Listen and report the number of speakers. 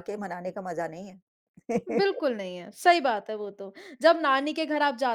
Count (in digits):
2